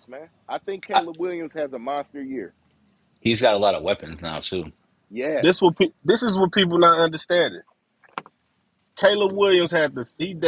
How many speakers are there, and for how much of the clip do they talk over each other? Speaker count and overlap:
three, about 1%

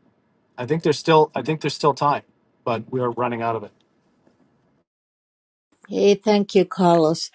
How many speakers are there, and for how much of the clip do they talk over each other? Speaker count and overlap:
two, no overlap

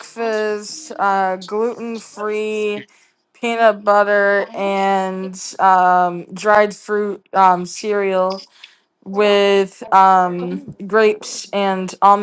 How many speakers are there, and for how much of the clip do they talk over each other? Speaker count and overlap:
one, no overlap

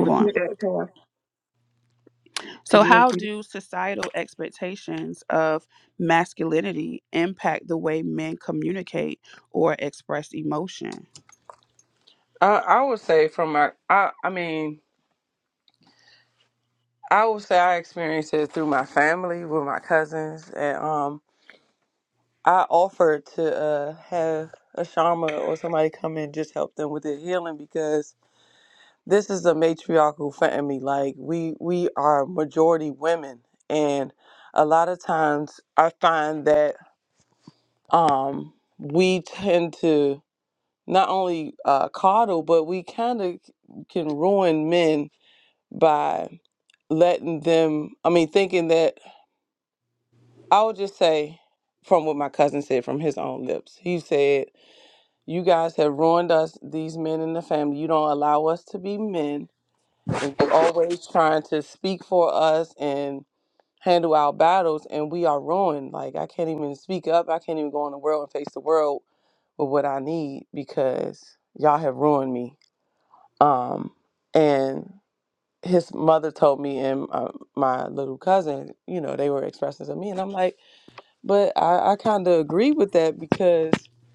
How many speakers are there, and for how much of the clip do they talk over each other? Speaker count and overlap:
three, about 1%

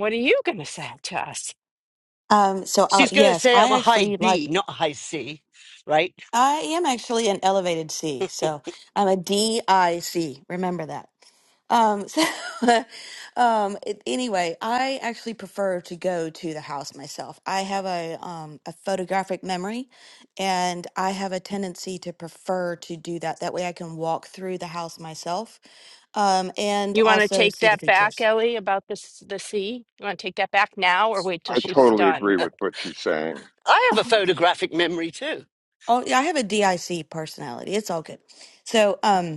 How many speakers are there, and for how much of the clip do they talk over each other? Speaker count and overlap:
four, about 9%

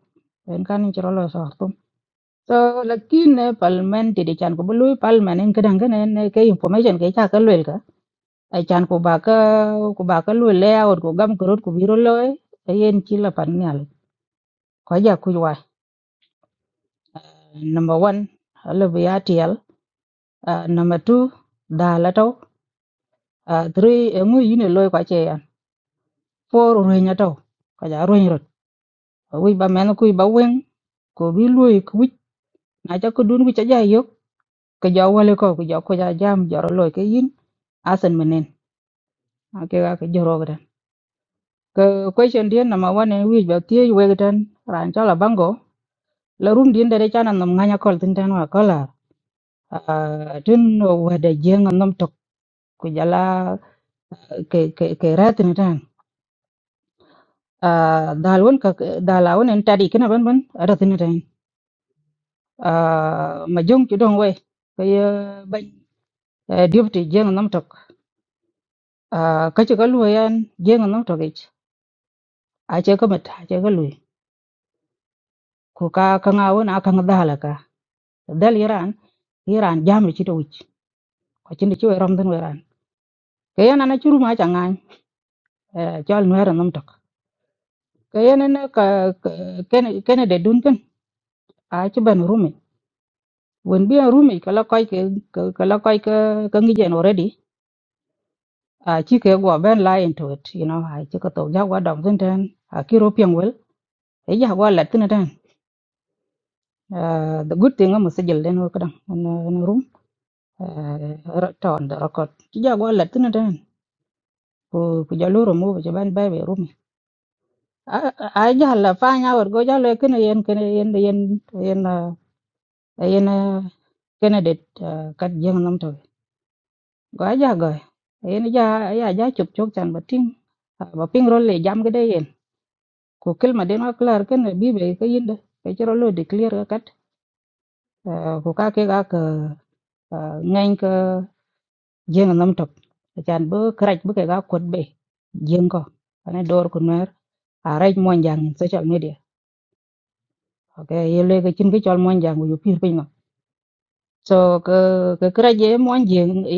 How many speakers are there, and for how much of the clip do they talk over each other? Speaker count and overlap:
one, no overlap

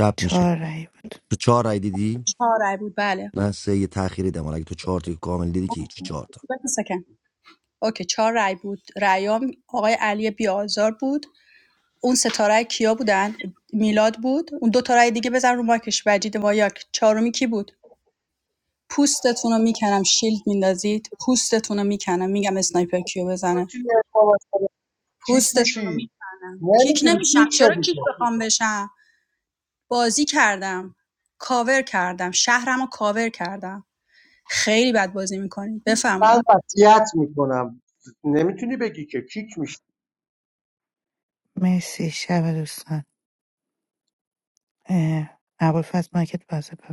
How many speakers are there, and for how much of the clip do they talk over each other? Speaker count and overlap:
four, about 5%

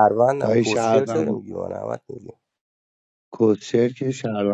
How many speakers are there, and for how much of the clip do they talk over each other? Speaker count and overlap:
two, about 21%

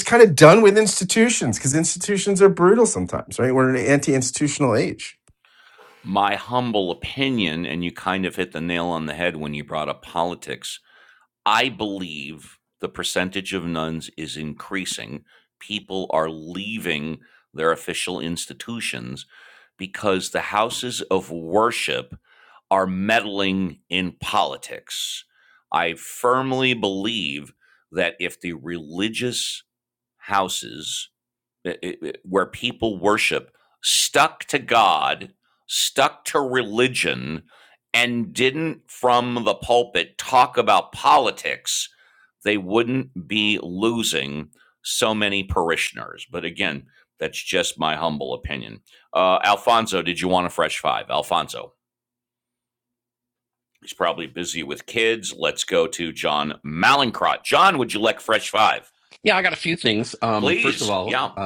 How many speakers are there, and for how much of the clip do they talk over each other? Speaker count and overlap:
three, about 2%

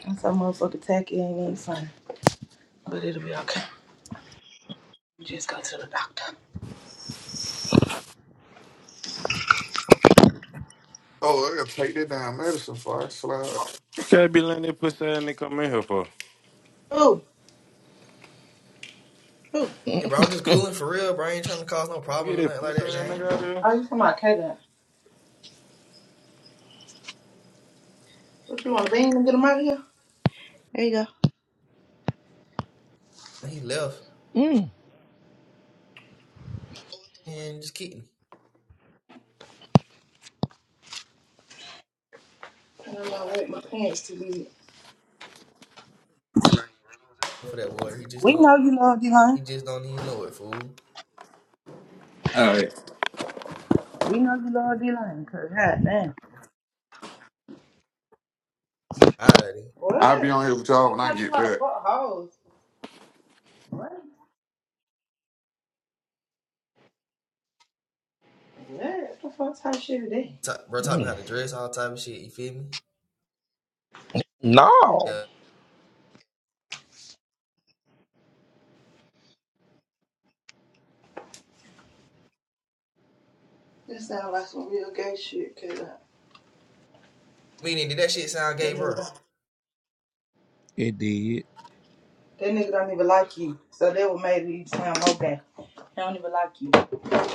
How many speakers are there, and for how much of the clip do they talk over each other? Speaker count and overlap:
five, about 4%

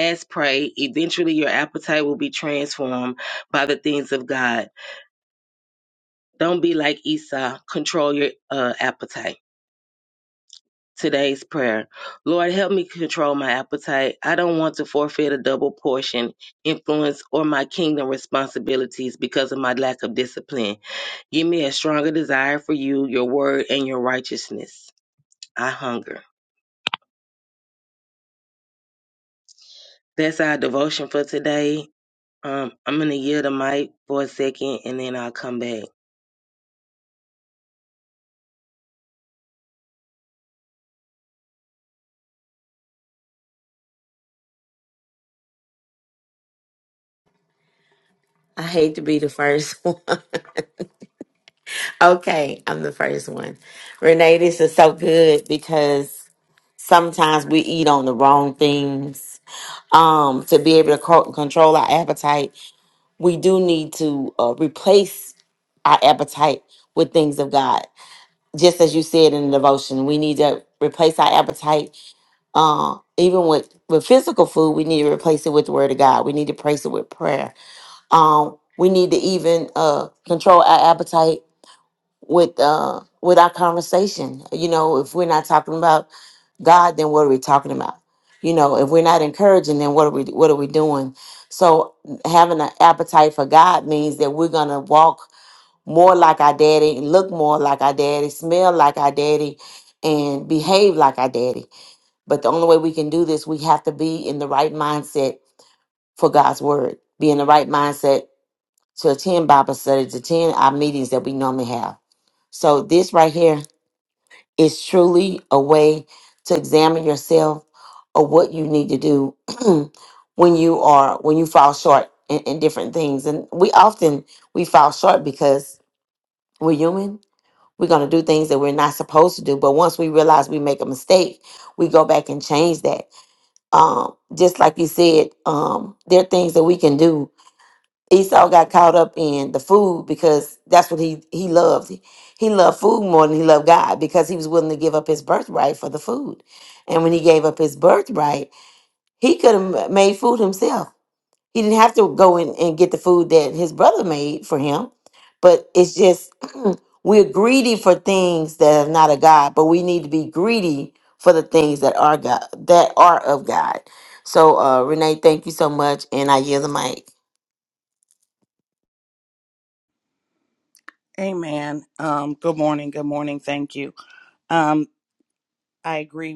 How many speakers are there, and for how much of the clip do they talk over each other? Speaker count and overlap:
three, no overlap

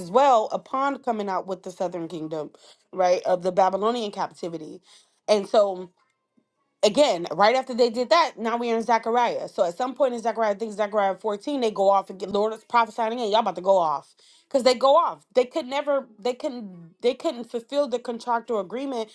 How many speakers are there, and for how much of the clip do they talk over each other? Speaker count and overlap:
one, no overlap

